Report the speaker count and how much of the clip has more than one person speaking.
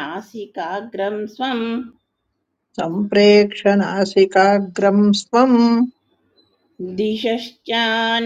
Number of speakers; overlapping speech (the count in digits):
2, no overlap